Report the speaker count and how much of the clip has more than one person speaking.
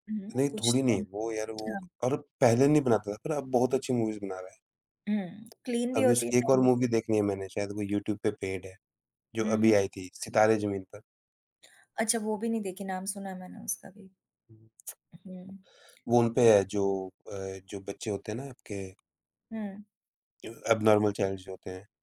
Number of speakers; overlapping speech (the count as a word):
two, about 9%